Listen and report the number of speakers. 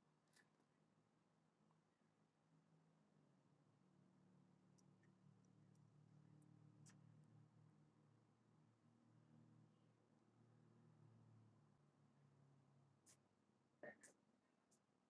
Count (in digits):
0